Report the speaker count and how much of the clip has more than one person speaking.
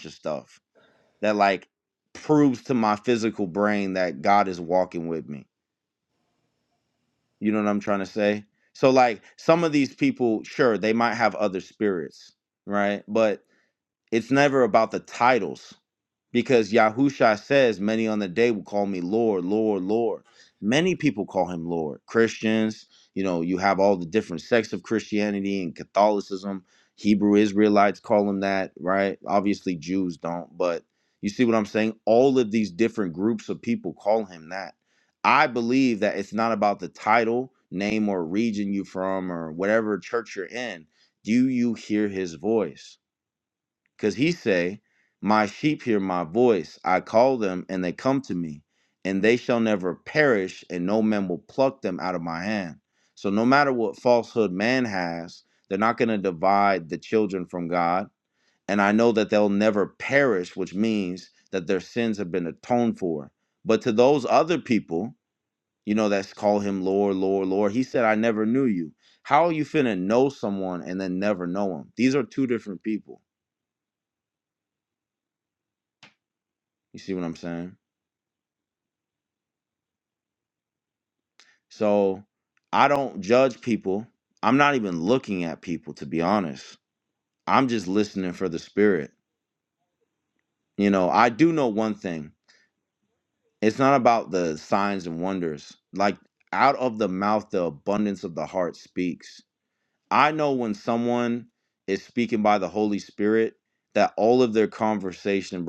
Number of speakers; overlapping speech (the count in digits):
1, no overlap